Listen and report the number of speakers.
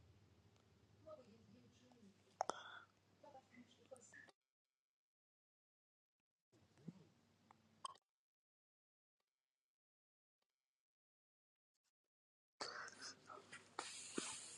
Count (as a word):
zero